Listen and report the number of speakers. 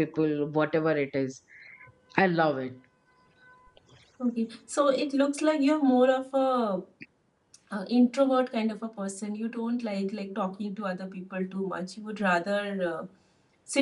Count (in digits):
2